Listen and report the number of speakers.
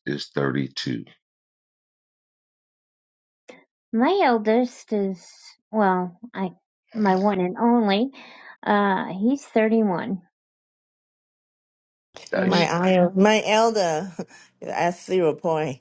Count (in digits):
3